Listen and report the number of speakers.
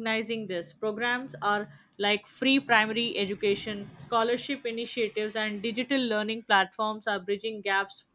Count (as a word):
one